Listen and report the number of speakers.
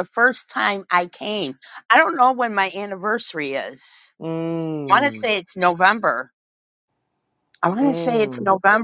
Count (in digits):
2